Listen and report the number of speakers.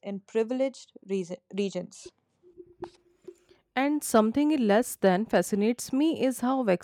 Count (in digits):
2